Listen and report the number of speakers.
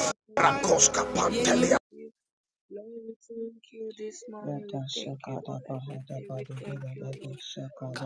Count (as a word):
three